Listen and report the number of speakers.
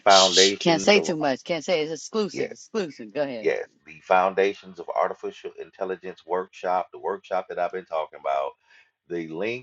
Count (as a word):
two